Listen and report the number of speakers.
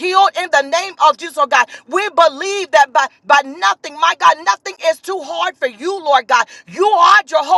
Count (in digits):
1